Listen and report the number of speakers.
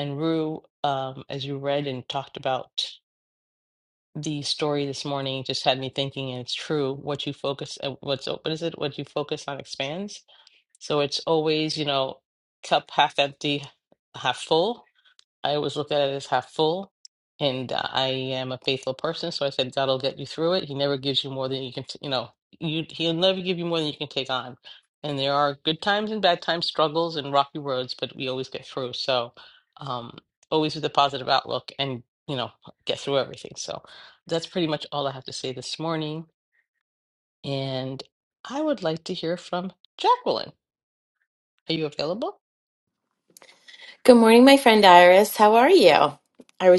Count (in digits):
2